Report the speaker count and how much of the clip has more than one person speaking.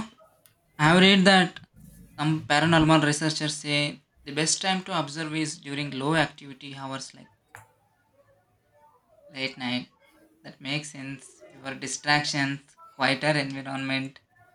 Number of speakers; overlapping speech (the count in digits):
1, no overlap